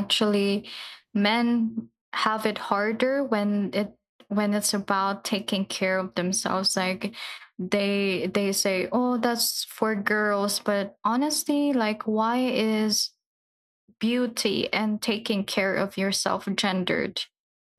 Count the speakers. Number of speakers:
one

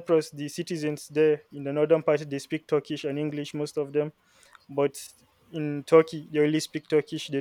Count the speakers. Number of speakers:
one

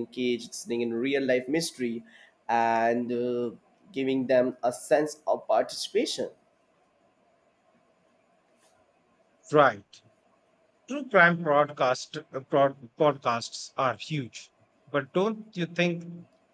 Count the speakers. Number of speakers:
two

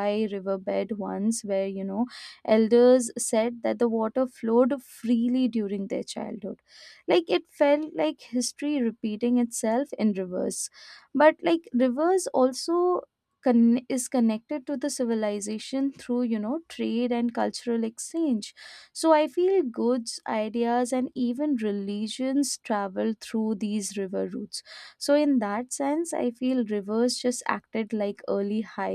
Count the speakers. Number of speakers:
one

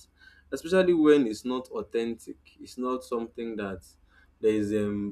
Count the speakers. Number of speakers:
one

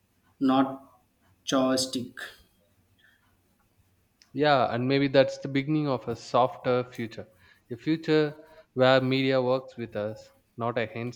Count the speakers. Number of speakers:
two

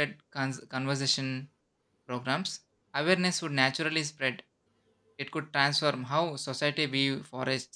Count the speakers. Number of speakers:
one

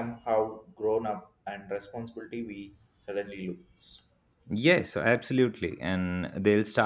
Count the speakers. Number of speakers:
two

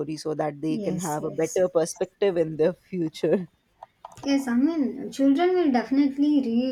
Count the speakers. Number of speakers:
two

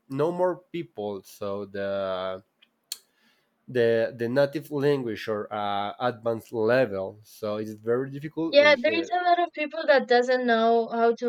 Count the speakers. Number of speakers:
two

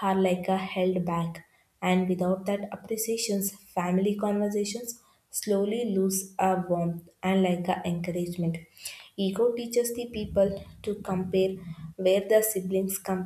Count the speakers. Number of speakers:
one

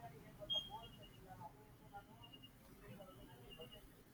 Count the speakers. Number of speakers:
zero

